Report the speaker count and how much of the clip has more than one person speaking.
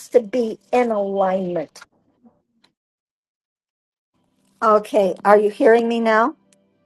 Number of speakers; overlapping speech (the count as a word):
one, no overlap